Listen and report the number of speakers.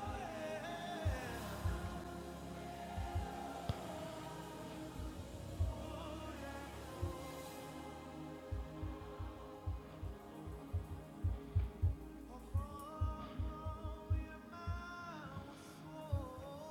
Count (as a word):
zero